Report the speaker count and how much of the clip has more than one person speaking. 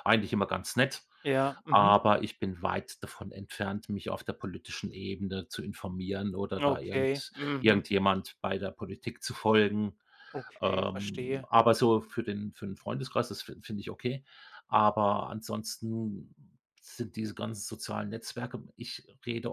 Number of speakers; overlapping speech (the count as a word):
two, about 12%